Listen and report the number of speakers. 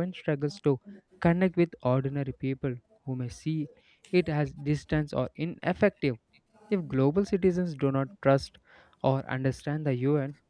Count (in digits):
1